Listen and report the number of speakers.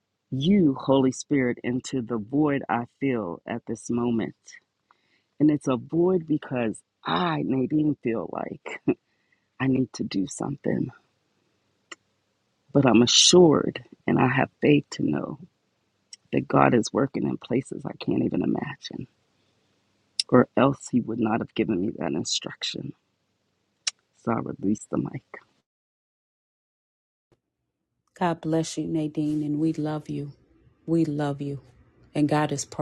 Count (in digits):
2